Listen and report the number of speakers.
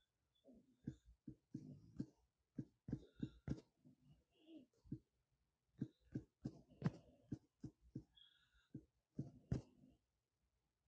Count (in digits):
0